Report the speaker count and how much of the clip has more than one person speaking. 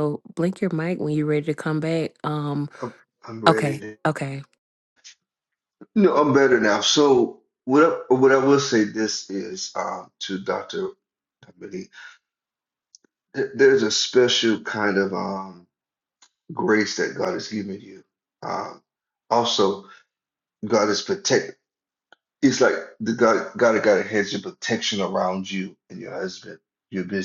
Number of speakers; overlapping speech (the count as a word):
two, about 2%